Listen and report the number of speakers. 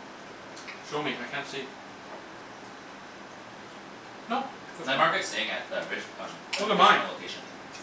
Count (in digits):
2